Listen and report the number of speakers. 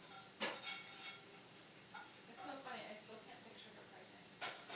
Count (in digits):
1